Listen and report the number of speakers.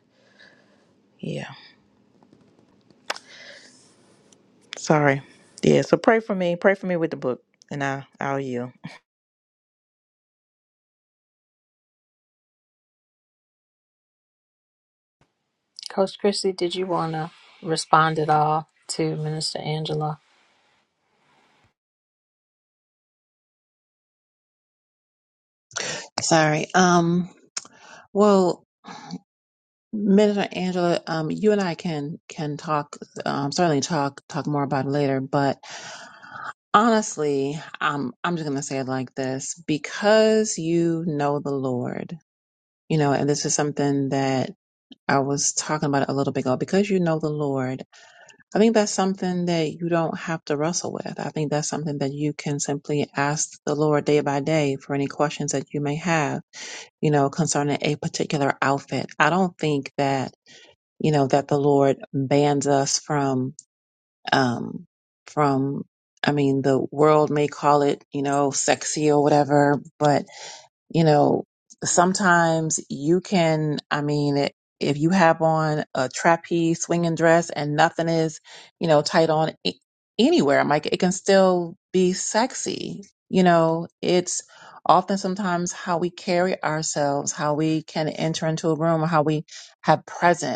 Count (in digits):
3